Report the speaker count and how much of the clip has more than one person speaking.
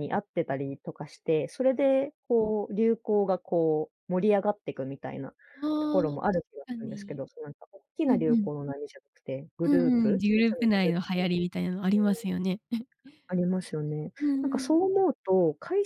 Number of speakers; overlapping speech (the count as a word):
two, about 19%